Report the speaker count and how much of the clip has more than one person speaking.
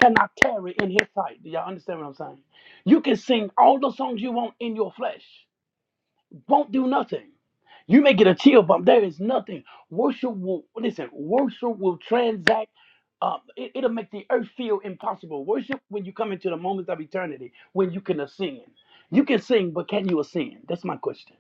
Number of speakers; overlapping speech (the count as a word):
one, no overlap